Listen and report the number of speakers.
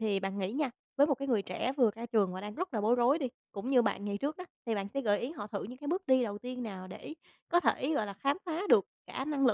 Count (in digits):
1